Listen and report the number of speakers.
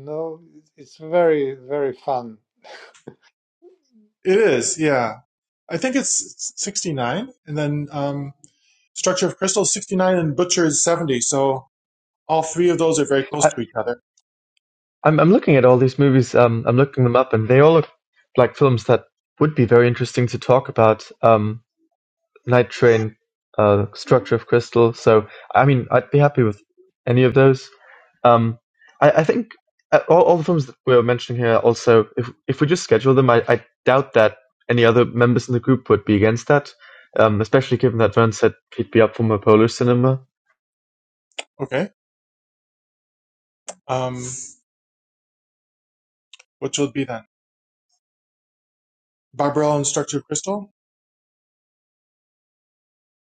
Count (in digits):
3